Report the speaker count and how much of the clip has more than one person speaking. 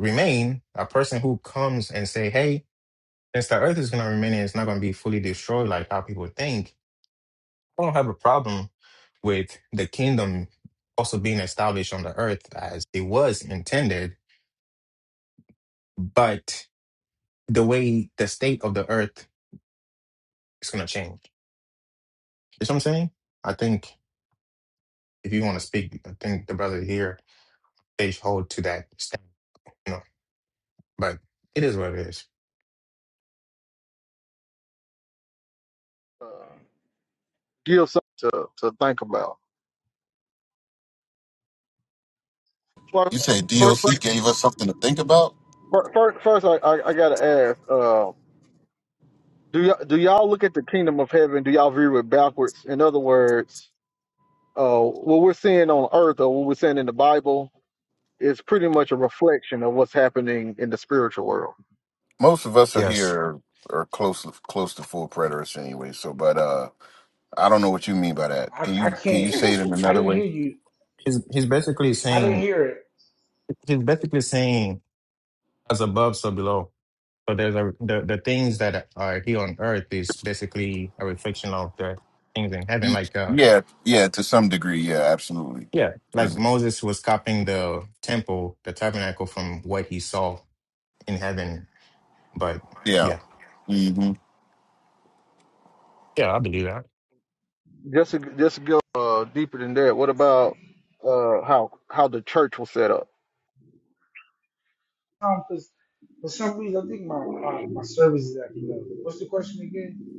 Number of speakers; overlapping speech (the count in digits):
4, about 3%